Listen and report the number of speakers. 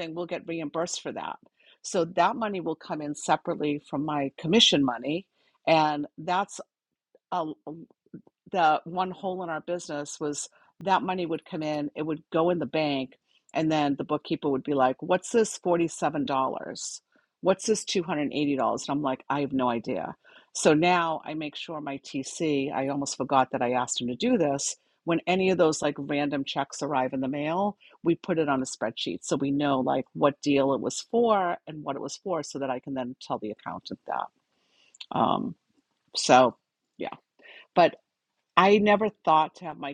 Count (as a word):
one